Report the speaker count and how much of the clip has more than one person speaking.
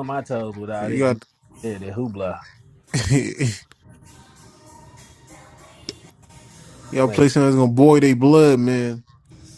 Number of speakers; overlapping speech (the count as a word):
two, about 6%